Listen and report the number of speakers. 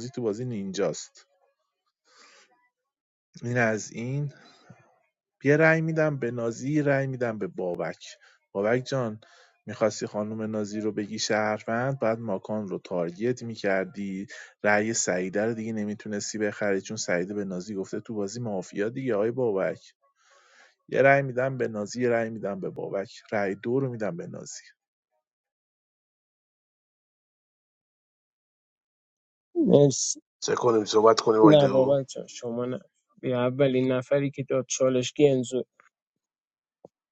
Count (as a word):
three